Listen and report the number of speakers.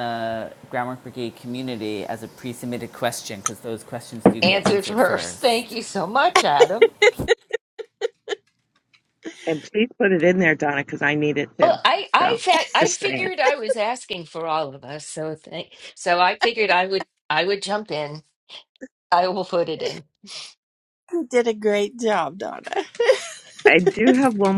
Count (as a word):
four